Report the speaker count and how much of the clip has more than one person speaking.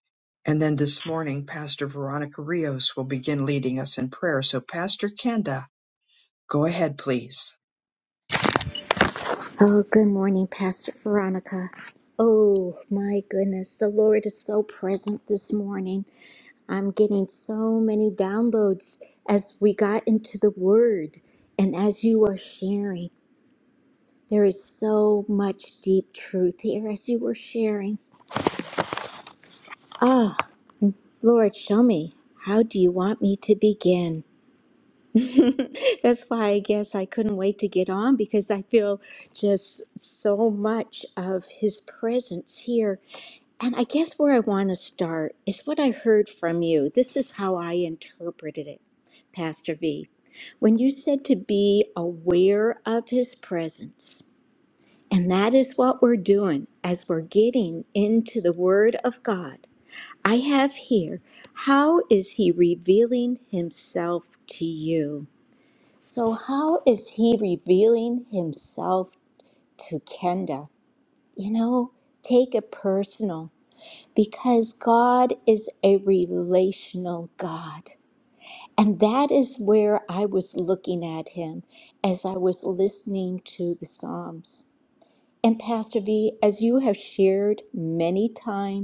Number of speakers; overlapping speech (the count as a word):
two, no overlap